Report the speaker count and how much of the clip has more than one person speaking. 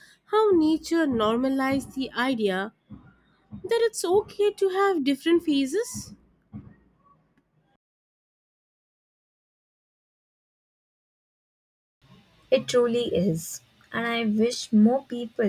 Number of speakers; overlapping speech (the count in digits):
2, no overlap